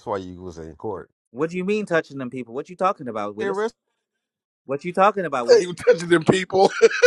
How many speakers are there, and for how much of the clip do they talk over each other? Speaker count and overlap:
3, about 4%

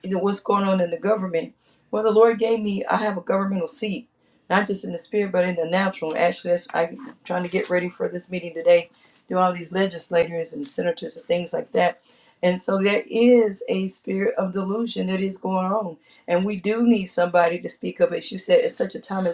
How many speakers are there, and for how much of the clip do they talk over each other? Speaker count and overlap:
1, no overlap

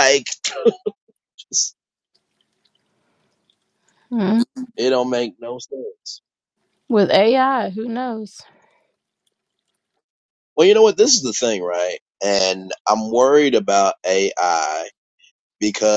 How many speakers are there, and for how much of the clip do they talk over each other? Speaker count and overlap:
2, no overlap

